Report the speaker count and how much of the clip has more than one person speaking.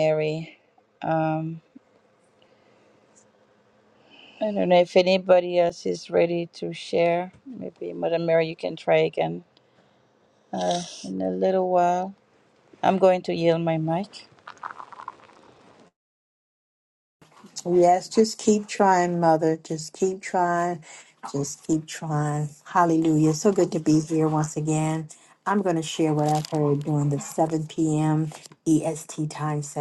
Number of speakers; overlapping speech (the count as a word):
two, no overlap